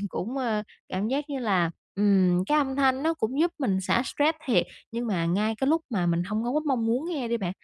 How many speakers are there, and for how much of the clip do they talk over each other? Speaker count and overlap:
one, no overlap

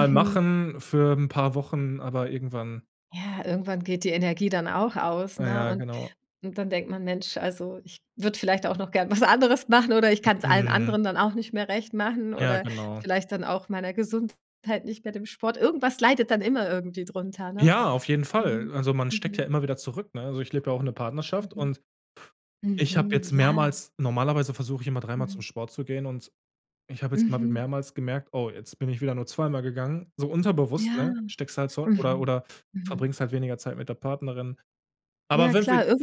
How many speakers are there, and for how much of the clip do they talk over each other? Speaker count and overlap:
two, about 16%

